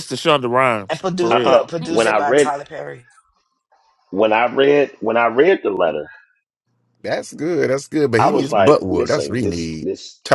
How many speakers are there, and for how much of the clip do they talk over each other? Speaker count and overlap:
four, about 29%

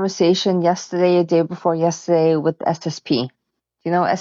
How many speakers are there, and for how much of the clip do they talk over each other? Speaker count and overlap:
one, no overlap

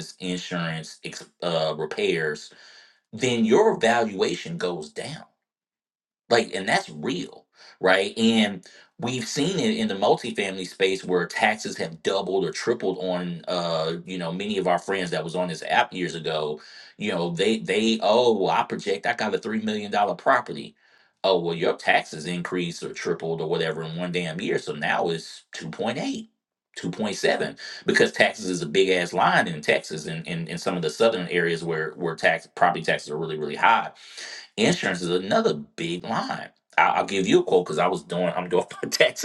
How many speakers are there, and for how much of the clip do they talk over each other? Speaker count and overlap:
one, no overlap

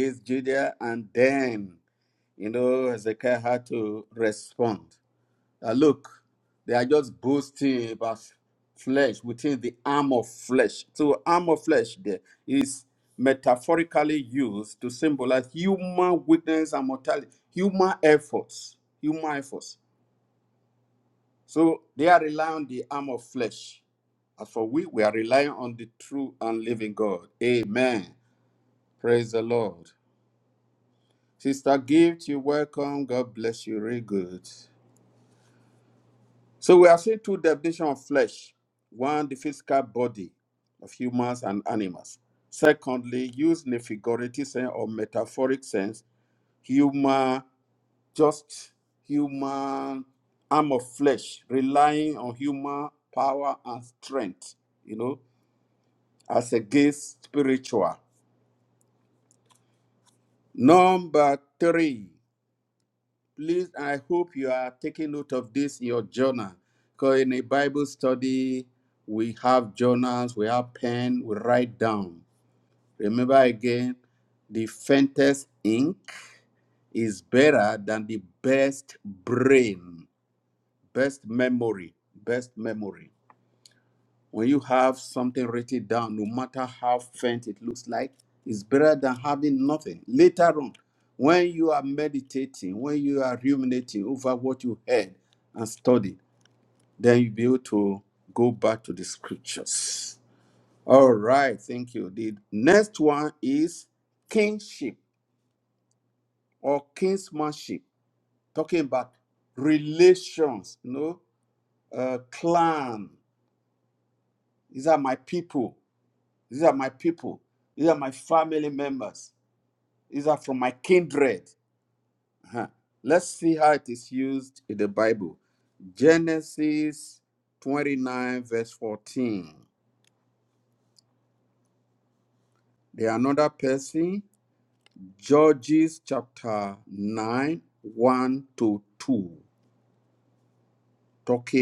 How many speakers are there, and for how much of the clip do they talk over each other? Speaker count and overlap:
one, no overlap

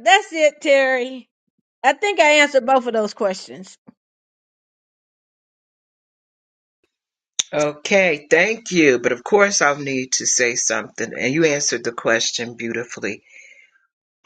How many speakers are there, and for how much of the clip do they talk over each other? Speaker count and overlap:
two, no overlap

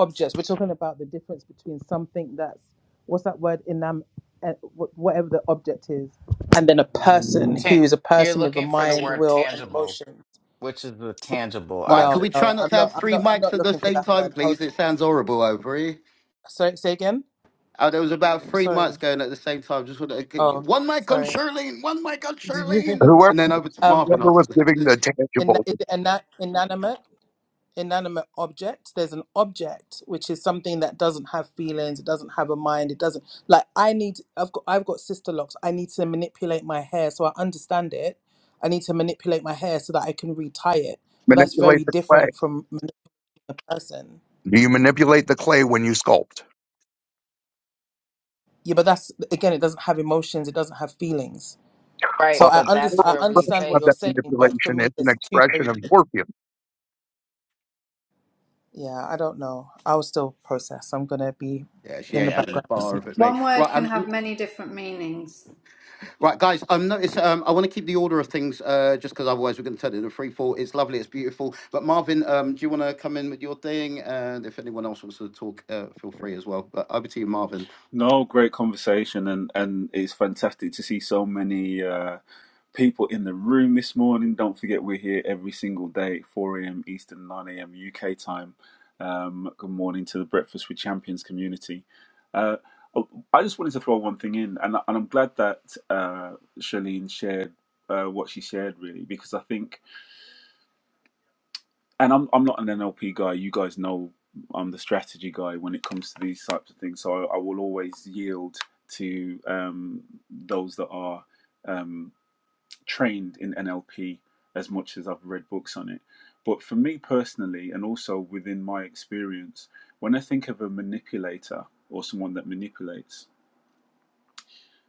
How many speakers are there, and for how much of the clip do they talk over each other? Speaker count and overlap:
six, about 10%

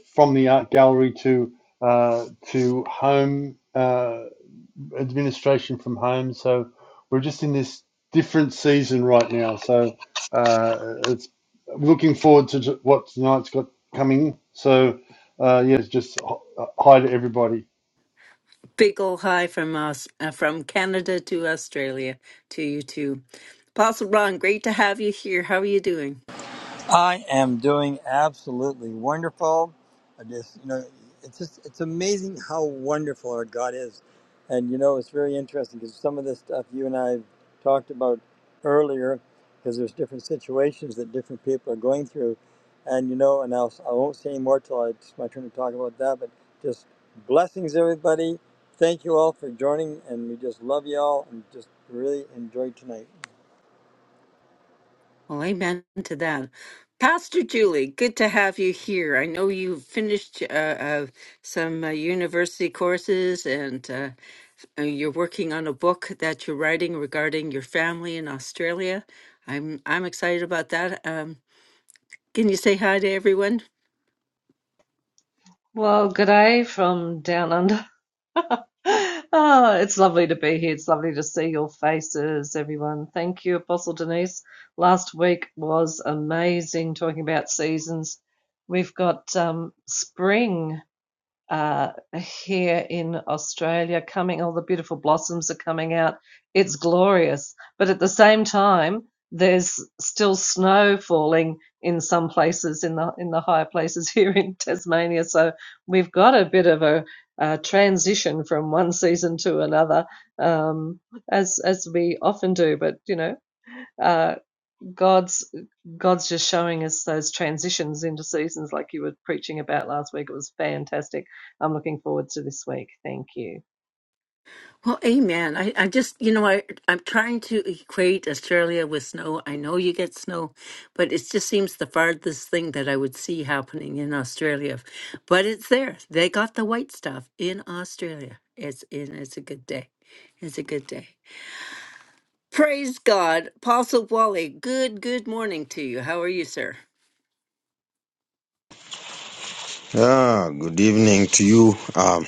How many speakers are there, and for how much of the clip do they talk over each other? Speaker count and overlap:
five, no overlap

